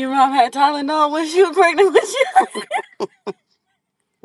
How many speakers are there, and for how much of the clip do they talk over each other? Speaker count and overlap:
1, no overlap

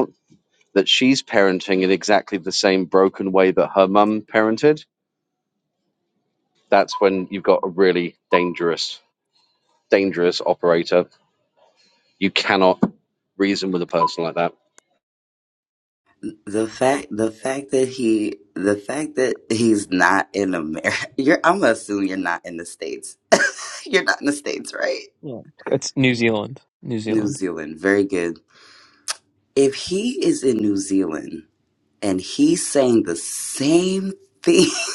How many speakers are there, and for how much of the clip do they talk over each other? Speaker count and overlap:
3, about 1%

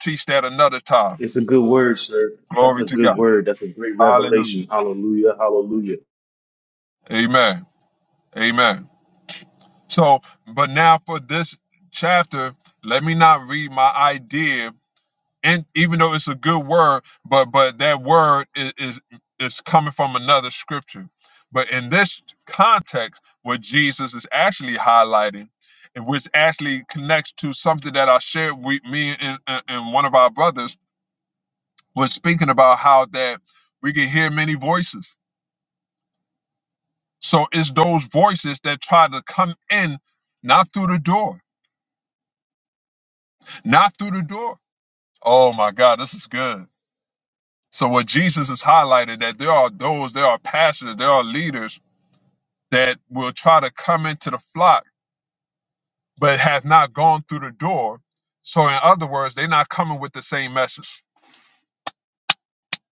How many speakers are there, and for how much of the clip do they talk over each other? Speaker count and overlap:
2, about 2%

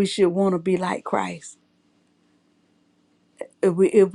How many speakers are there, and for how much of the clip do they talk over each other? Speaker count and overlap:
1, no overlap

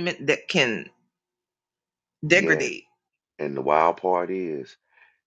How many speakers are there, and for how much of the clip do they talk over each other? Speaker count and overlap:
2, about 7%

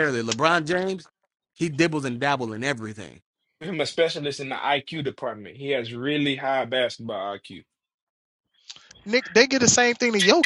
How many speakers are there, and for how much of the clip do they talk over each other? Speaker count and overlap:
3, no overlap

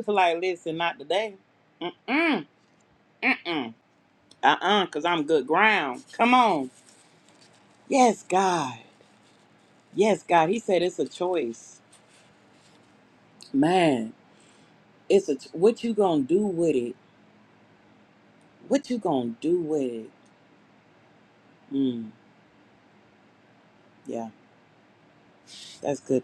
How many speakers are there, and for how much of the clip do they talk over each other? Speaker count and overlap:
1, no overlap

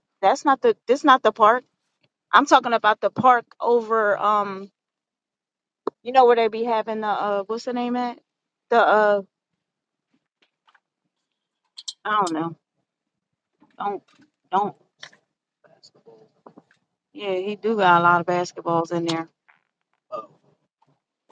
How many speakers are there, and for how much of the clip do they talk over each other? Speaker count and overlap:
1, no overlap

